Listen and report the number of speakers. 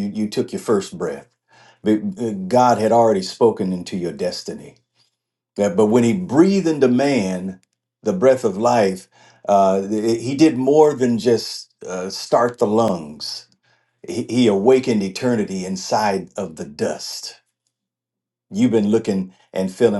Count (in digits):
1